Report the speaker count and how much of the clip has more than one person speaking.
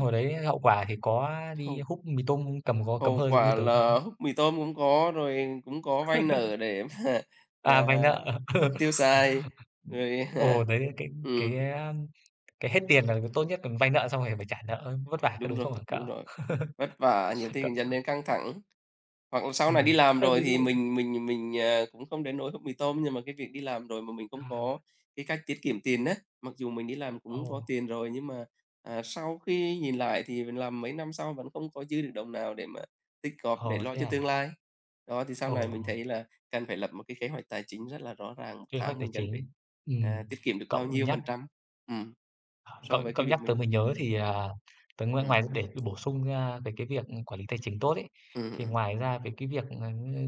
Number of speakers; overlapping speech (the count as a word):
two, about 16%